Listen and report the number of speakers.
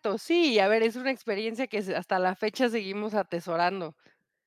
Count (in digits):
1